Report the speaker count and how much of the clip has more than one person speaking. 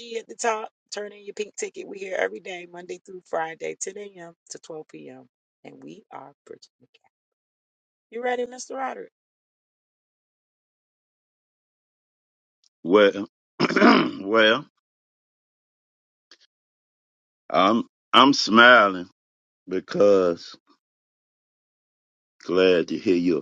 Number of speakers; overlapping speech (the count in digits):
2, no overlap